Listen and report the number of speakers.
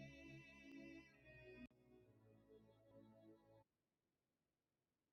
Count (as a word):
zero